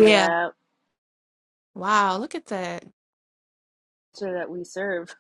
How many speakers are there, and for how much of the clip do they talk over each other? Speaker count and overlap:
2, about 7%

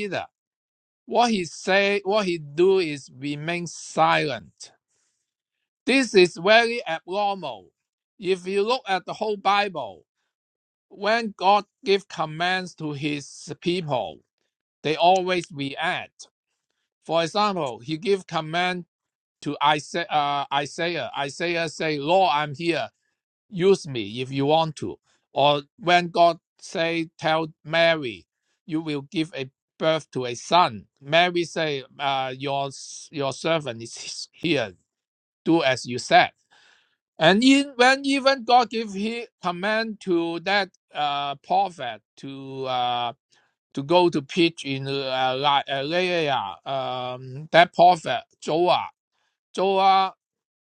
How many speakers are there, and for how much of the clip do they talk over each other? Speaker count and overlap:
1, no overlap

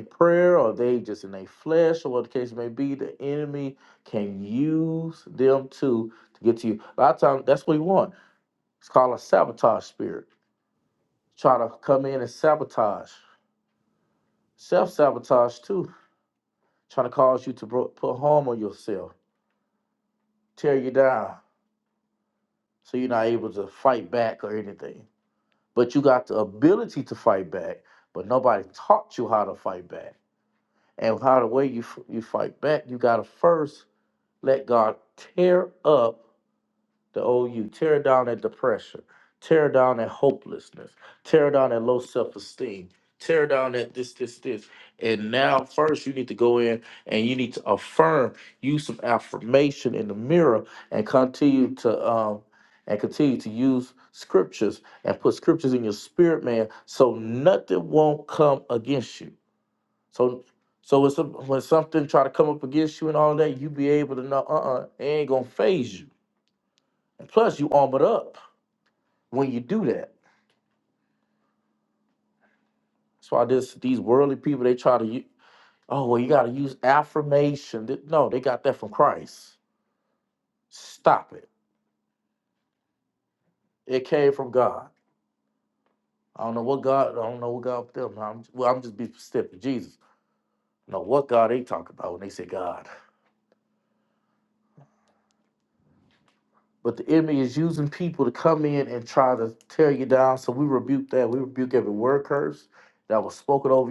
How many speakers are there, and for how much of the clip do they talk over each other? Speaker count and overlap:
1, no overlap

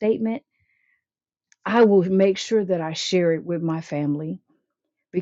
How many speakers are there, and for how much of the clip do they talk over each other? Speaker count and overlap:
1, no overlap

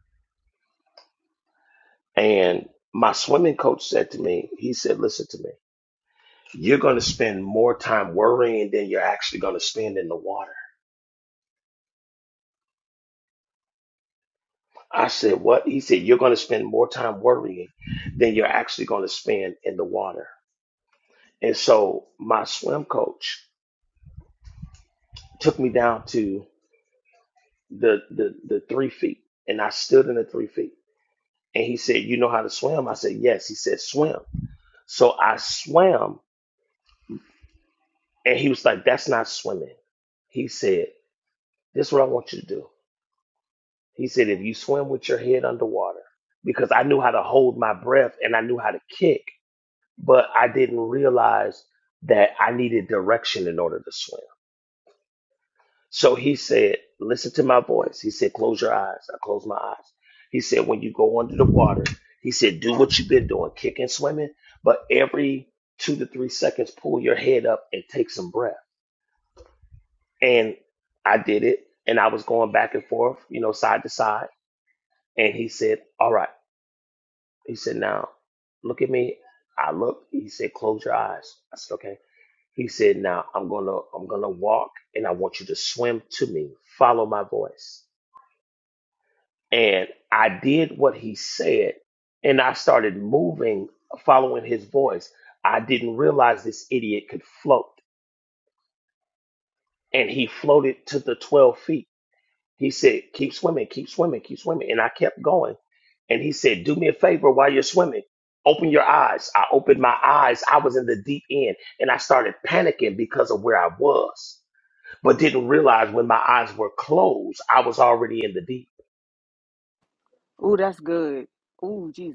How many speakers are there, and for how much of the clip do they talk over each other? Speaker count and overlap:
2, no overlap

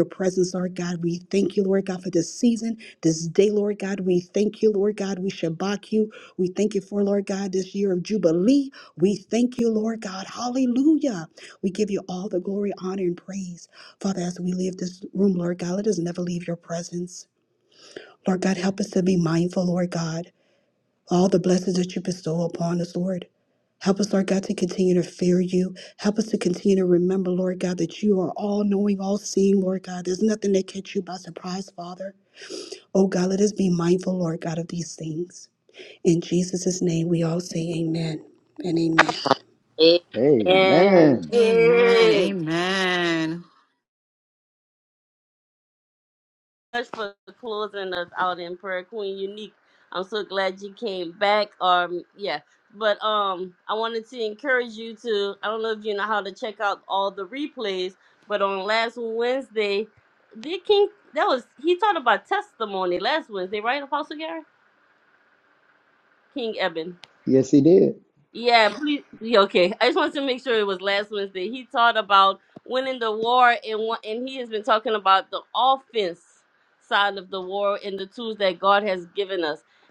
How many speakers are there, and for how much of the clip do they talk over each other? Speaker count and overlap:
4, about 2%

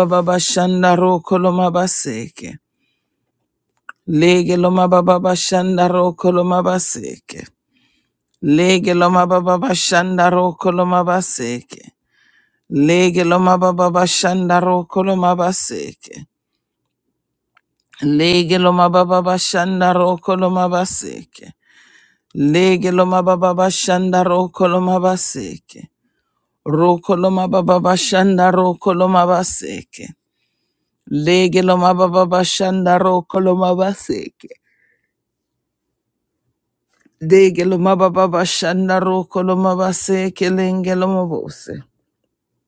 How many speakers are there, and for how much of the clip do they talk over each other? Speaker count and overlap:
1, no overlap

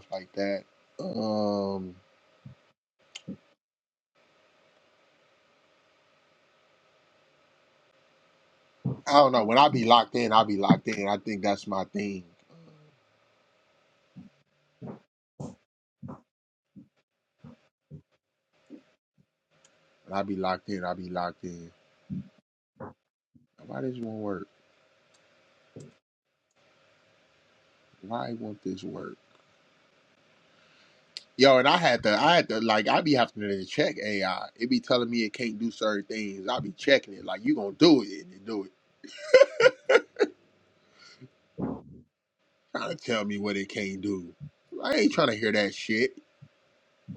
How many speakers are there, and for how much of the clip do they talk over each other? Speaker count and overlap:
1, no overlap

